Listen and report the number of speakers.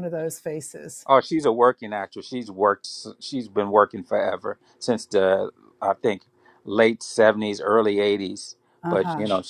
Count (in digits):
2